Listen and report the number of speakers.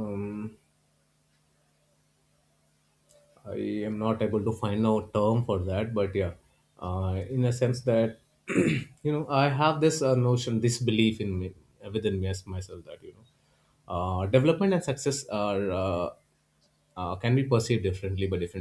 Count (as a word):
one